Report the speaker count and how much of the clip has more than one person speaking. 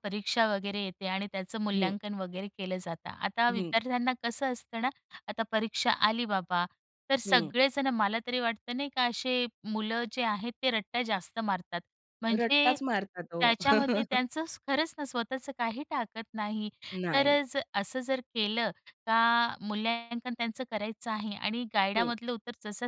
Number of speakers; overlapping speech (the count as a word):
two, about 8%